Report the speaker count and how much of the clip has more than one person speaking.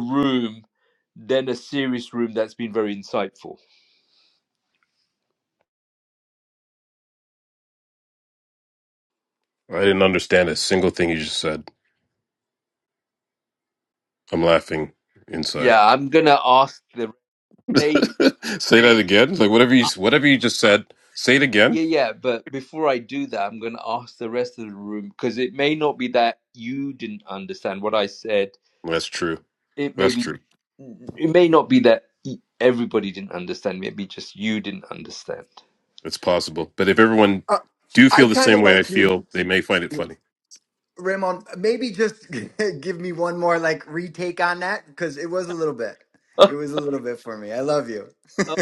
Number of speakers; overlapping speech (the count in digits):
3, about 3%